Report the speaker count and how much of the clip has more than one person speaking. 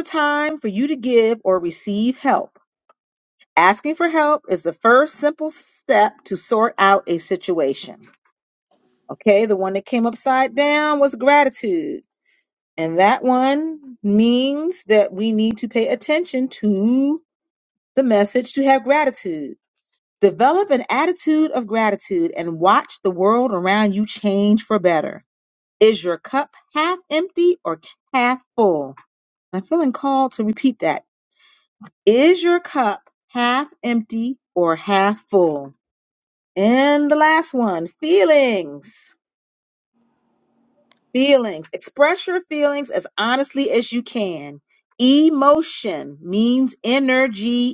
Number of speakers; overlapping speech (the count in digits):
1, no overlap